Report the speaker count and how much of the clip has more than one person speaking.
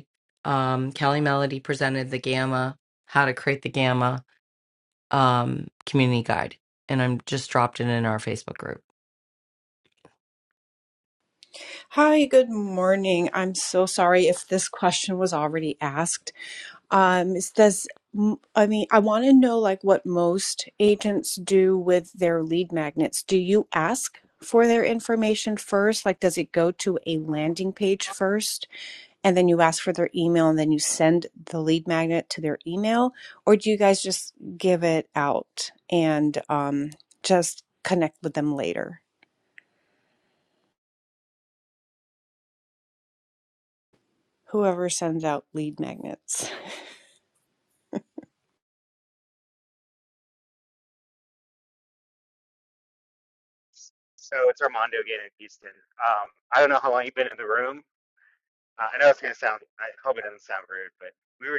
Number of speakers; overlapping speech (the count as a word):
three, no overlap